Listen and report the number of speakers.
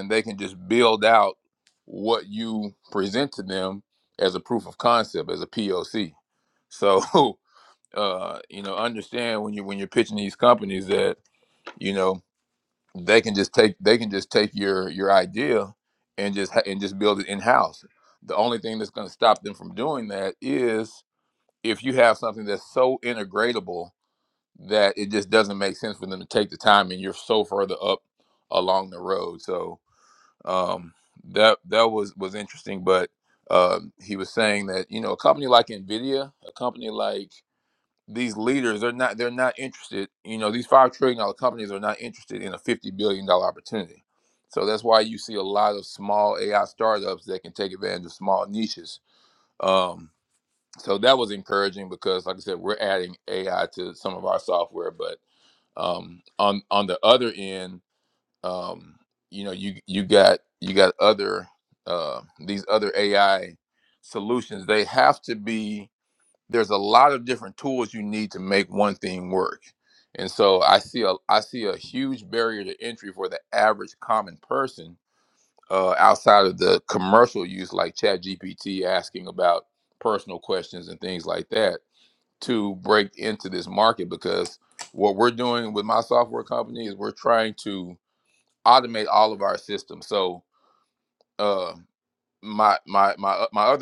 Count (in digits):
1